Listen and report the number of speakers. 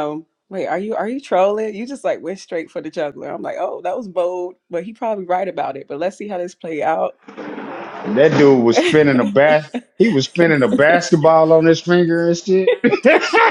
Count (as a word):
two